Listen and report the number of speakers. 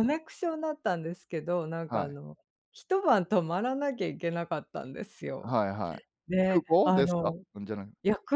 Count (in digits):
2